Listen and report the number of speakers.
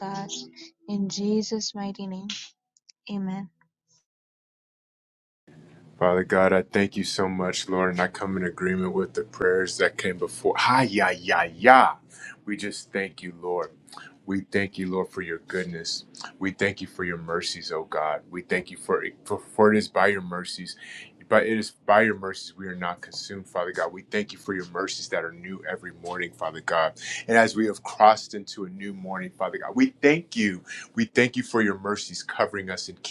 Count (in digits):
2